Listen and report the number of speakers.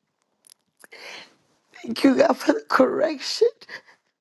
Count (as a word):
one